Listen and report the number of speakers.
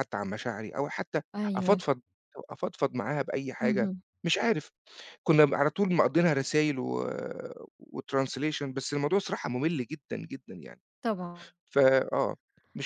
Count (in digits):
2